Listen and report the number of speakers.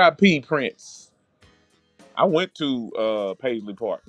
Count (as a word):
one